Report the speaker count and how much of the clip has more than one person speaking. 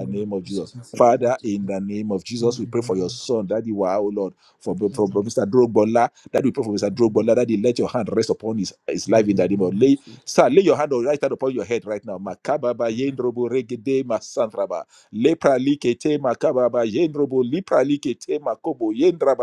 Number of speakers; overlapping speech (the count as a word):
one, no overlap